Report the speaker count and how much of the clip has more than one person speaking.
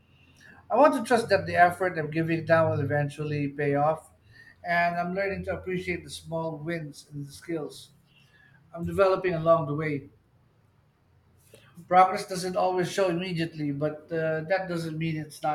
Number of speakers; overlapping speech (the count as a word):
one, no overlap